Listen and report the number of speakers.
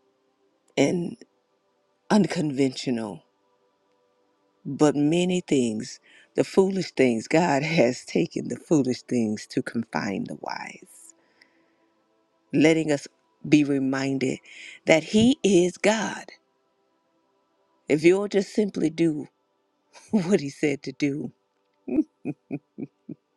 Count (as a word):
one